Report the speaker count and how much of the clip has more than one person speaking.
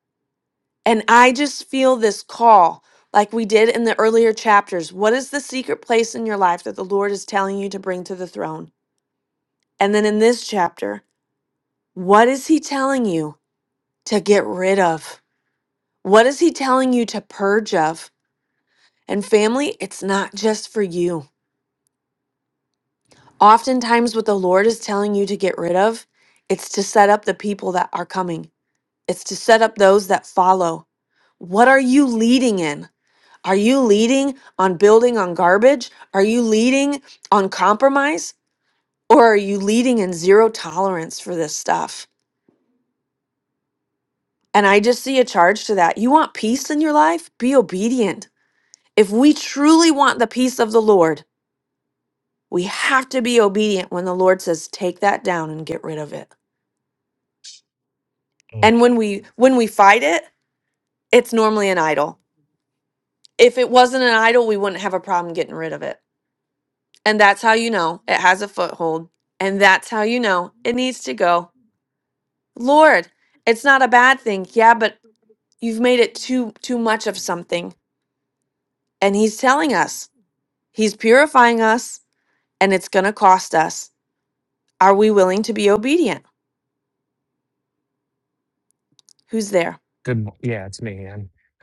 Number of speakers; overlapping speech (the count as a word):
two, under 1%